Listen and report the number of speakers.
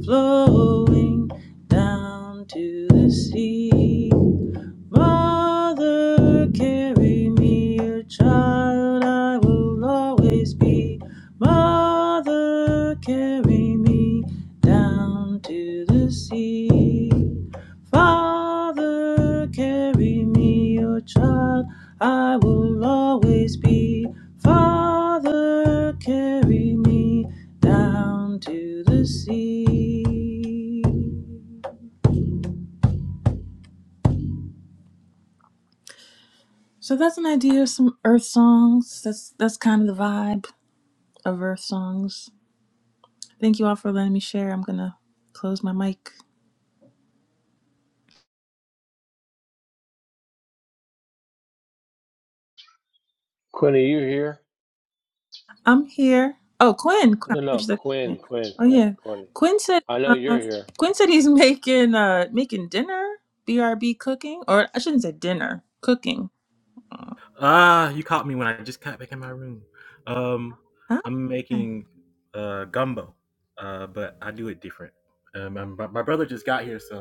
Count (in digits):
3